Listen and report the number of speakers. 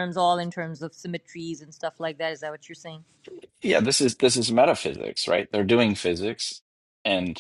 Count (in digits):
2